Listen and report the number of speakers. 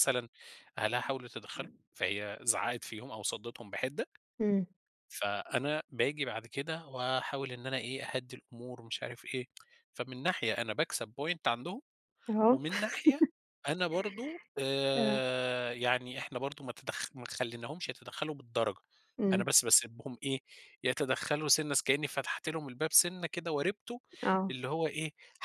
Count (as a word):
two